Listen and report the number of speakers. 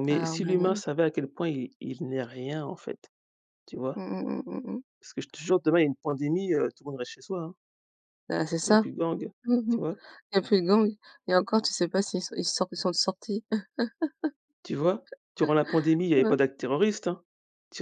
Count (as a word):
two